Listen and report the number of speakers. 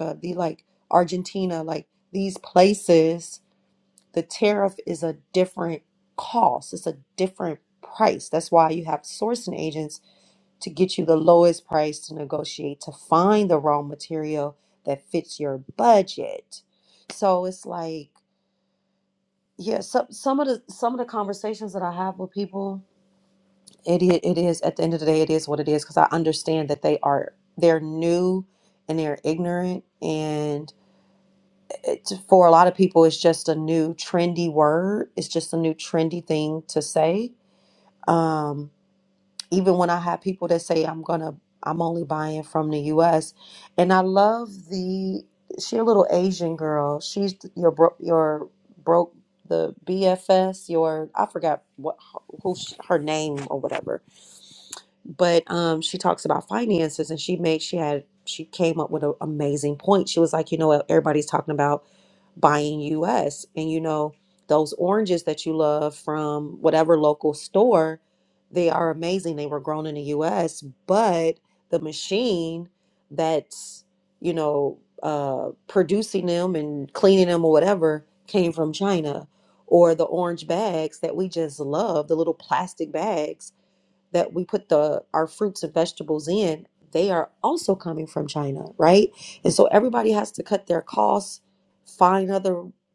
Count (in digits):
1